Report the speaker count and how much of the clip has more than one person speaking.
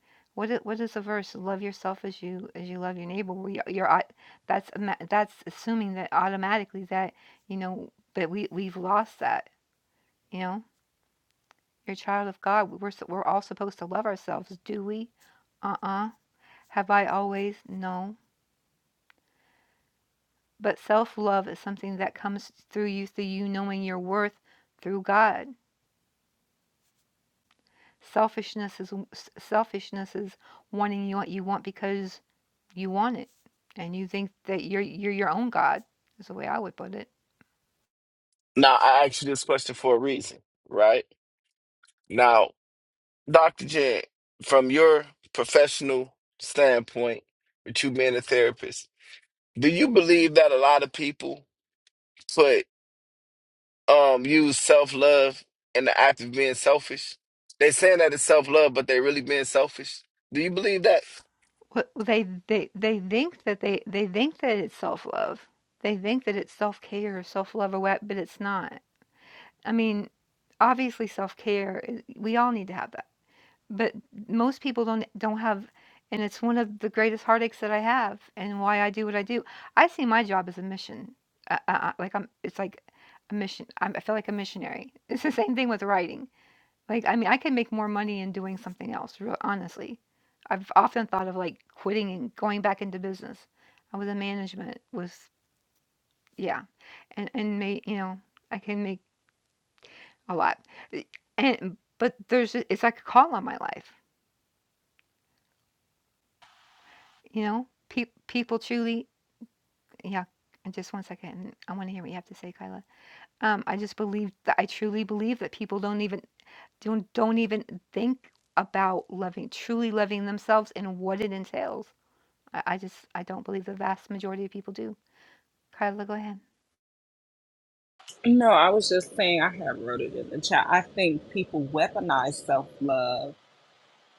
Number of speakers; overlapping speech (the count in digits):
3, no overlap